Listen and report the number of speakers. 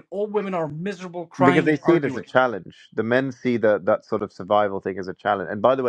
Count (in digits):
2